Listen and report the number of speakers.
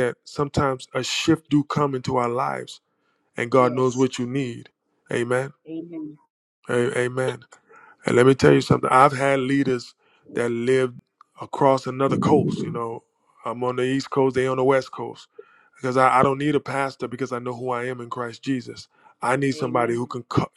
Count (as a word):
two